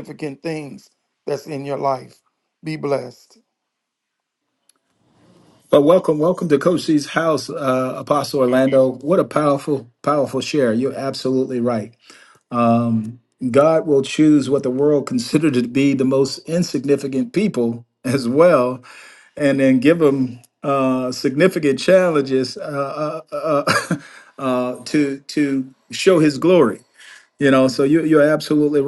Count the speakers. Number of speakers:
2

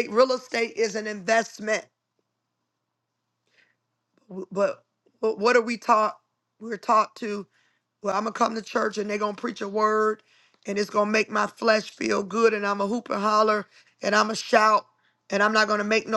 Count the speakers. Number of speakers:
1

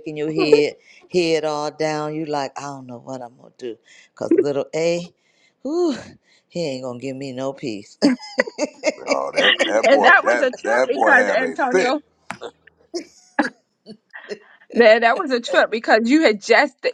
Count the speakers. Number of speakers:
3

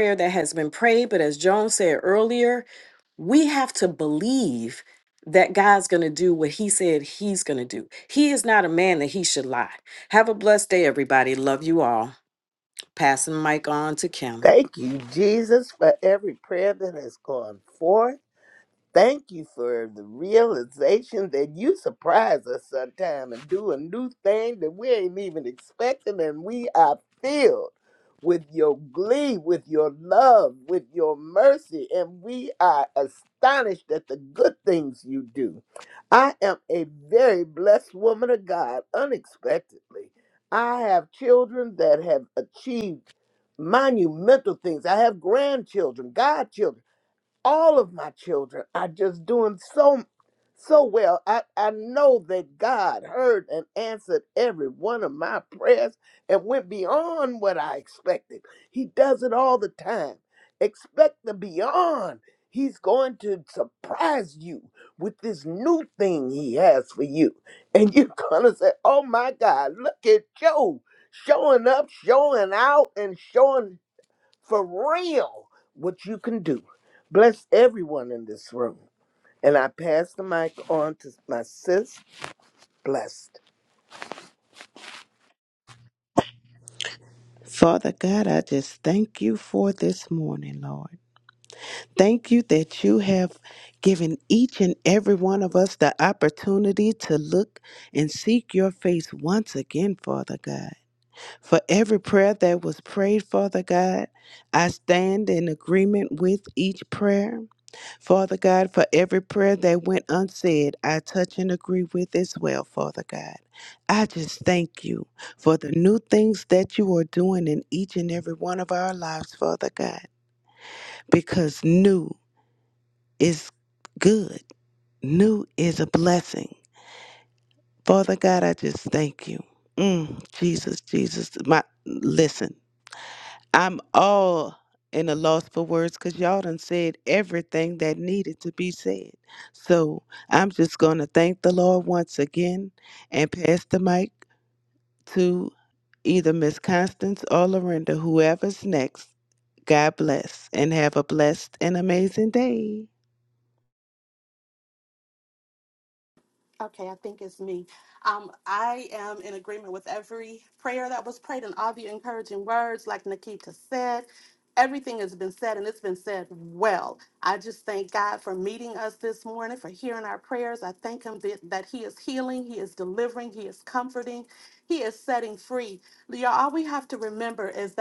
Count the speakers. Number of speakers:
4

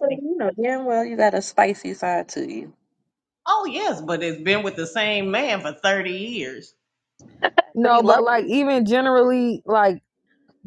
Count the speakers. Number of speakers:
3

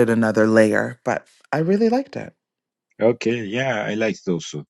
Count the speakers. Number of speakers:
2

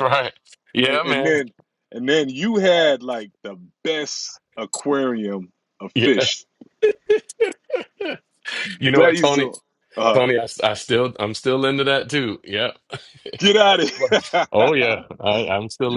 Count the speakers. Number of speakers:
2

